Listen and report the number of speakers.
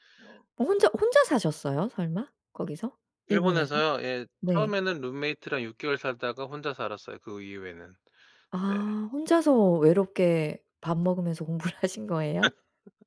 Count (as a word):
two